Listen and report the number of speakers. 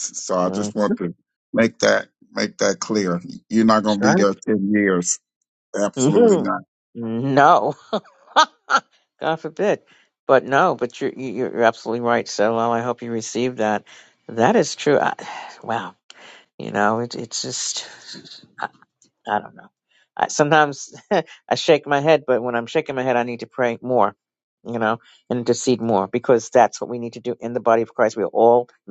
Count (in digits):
2